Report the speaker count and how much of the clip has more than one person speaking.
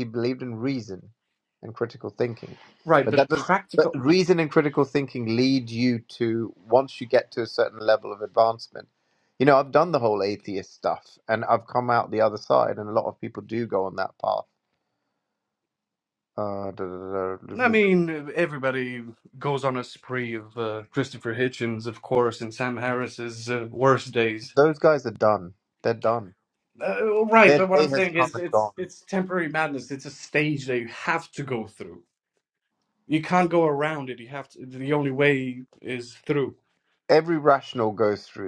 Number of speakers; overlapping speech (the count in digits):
2, about 5%